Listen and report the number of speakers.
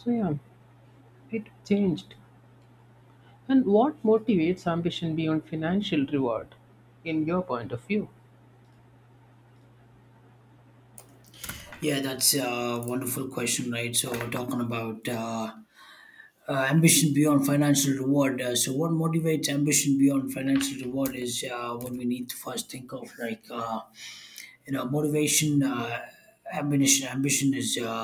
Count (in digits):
2